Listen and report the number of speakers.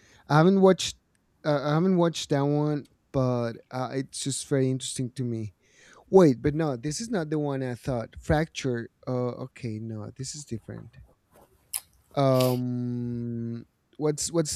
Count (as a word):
one